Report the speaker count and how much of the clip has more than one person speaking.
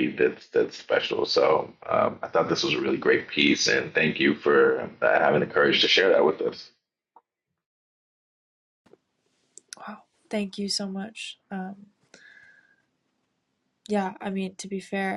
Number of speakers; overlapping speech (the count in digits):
2, no overlap